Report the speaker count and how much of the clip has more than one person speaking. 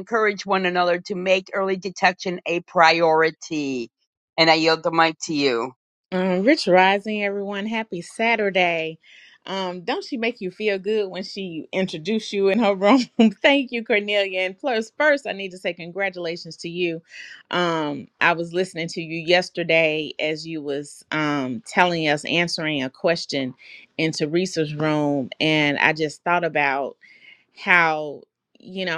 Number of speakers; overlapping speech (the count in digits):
2, no overlap